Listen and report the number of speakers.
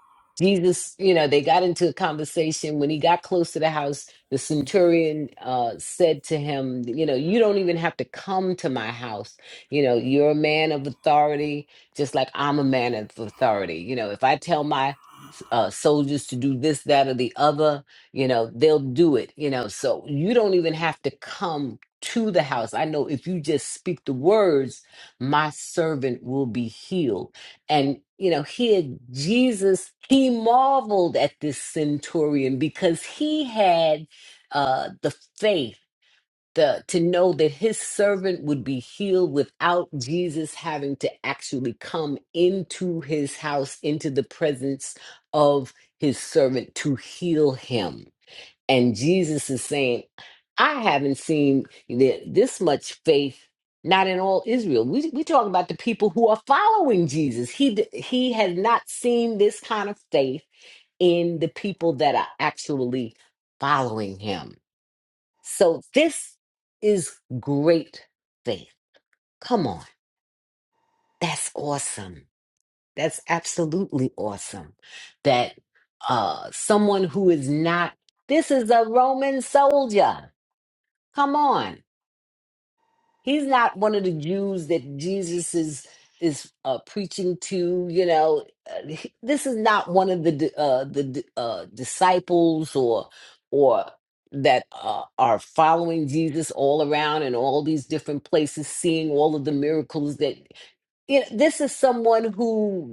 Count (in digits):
1